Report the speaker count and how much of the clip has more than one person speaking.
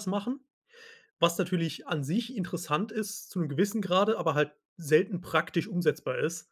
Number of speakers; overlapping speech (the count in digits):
1, no overlap